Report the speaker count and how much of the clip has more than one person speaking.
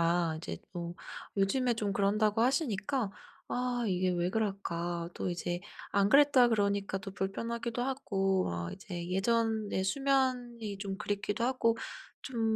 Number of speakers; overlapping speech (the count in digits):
1, no overlap